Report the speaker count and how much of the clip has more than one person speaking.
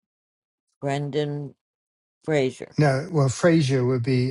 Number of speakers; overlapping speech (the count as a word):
two, no overlap